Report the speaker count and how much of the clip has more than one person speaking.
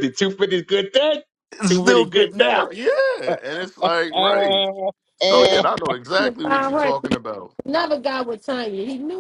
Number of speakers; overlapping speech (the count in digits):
3, about 29%